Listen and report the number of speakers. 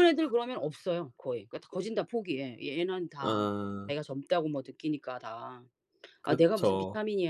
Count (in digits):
2